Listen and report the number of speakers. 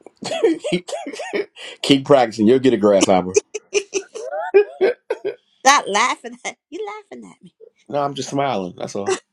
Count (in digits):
2